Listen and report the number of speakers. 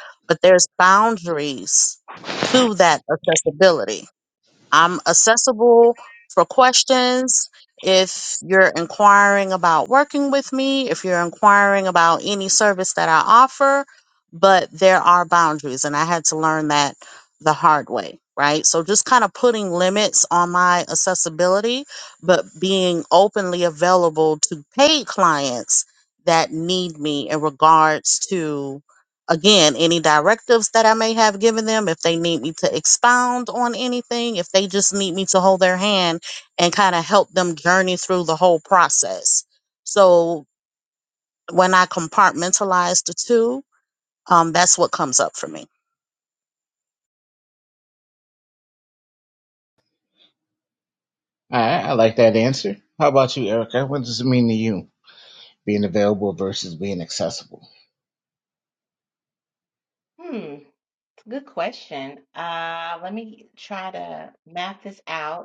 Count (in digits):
3